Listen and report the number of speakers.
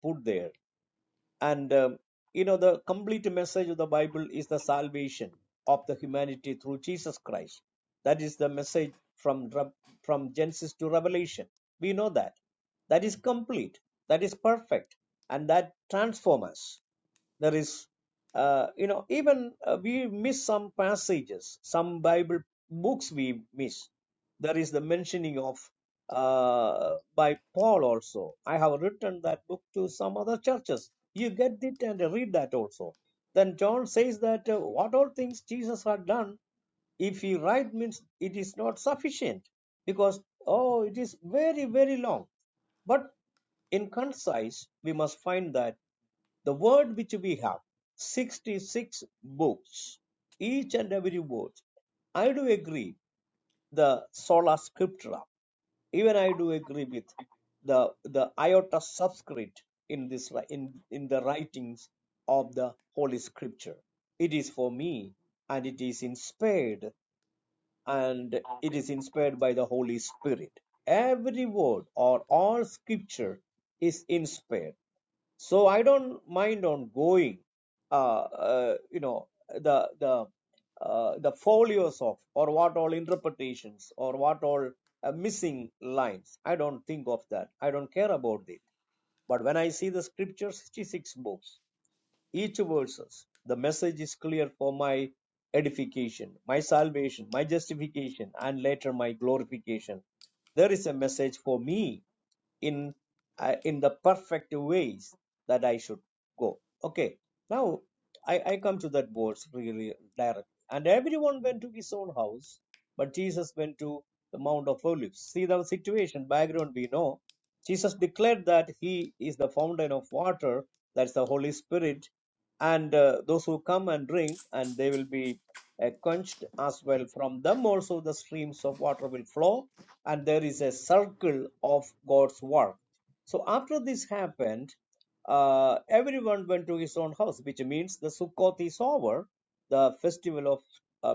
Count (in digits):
1